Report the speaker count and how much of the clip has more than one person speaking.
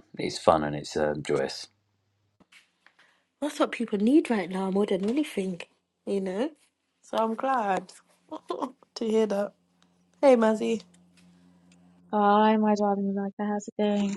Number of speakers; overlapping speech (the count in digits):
3, no overlap